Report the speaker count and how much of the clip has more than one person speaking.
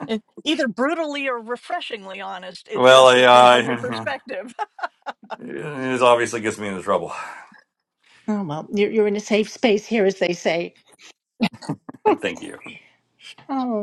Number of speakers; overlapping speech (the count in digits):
3, about 10%